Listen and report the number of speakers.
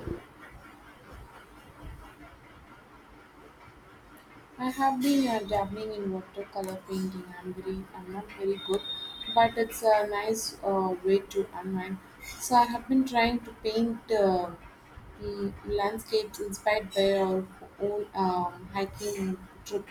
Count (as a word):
one